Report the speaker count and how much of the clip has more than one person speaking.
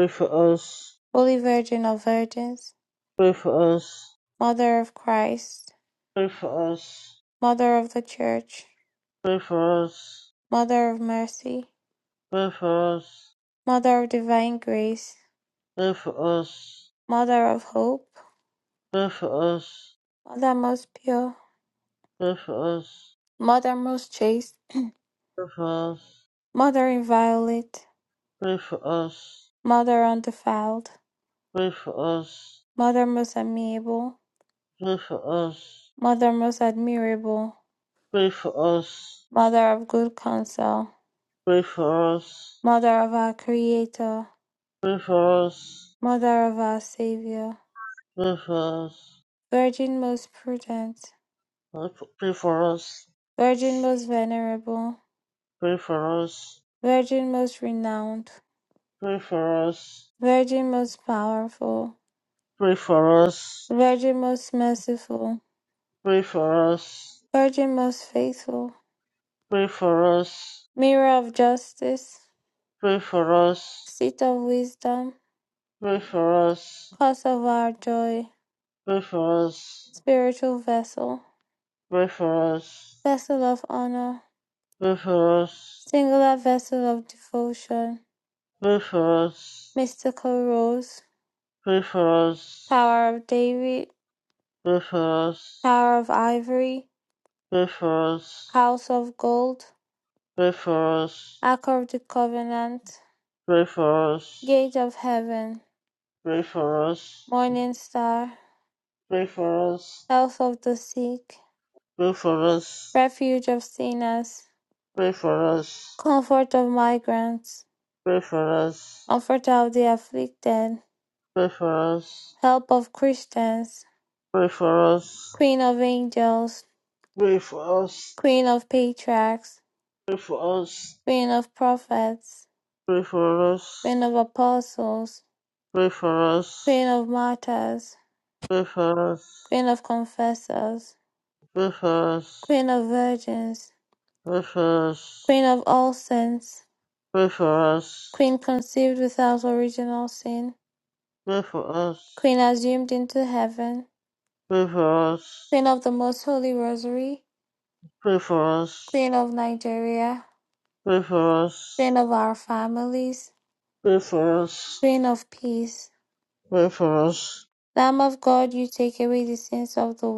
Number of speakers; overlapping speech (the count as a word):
two, no overlap